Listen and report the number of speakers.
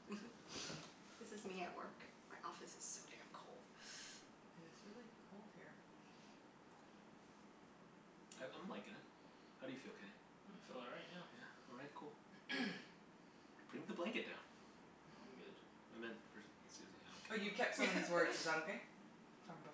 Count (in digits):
4